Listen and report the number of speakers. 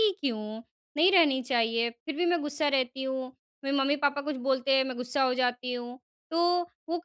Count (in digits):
1